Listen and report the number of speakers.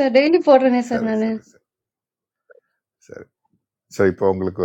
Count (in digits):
2